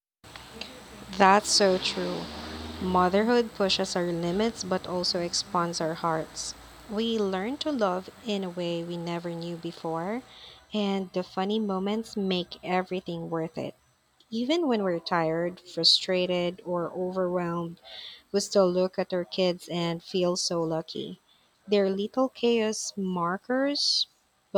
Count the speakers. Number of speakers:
one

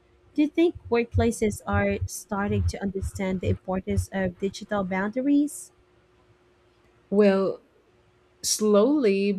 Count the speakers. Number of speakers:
two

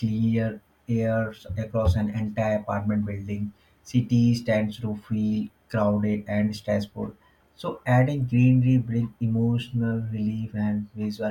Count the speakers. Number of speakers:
one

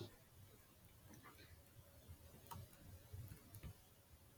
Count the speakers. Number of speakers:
zero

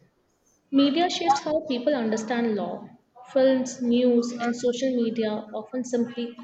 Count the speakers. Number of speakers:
one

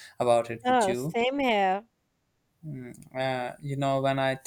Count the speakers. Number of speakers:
two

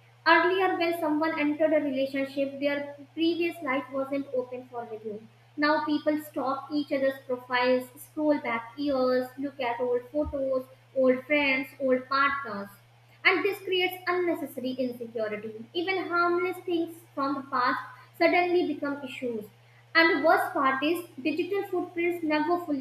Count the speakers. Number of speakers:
one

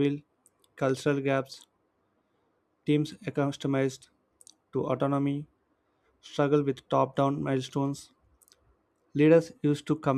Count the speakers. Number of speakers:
one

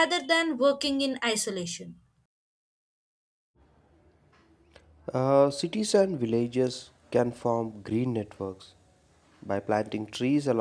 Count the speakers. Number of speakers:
two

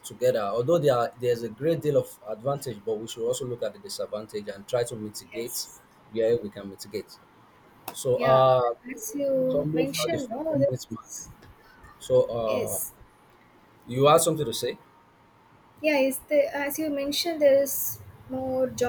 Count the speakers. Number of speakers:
two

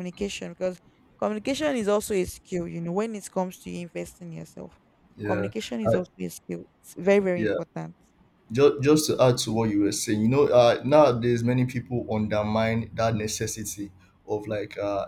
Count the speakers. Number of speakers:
two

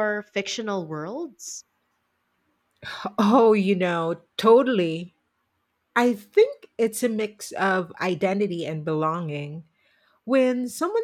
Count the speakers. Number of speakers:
two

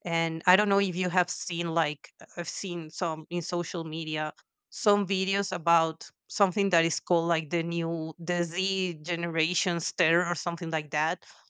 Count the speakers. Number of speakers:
one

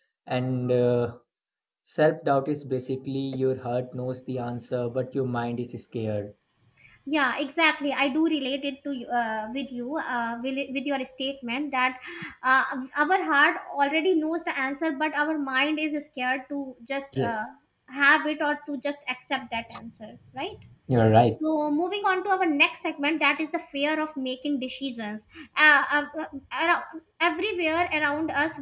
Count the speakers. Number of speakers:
two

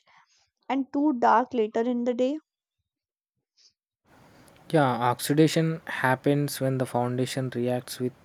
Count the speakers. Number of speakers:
two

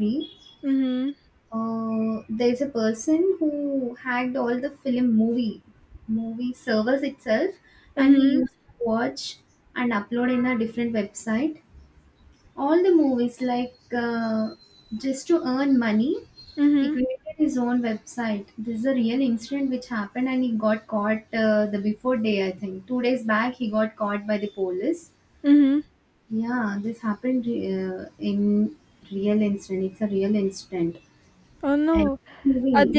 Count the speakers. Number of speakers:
two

